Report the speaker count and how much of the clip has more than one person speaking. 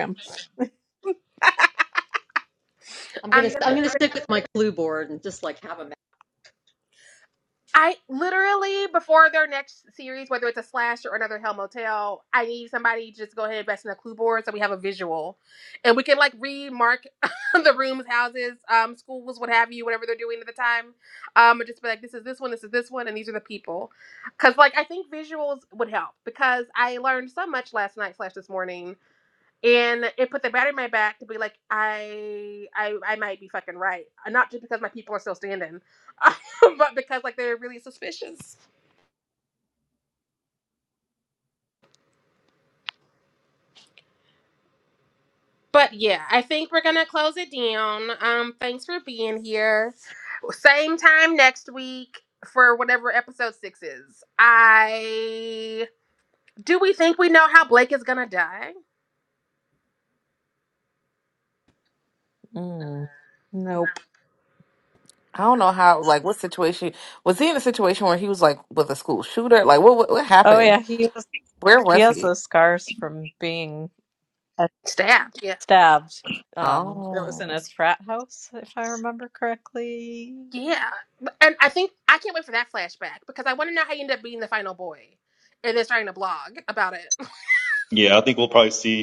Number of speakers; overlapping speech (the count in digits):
5, about 2%